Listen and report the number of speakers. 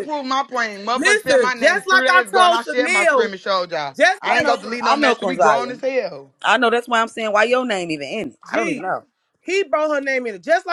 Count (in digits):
3